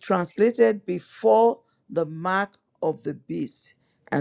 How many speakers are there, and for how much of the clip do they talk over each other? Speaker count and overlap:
1, no overlap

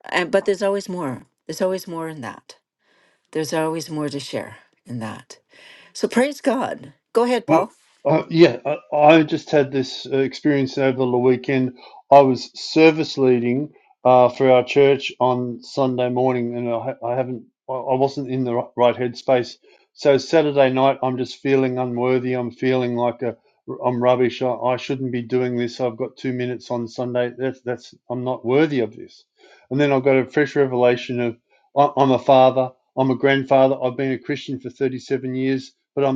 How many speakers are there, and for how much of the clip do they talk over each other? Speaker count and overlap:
2, under 1%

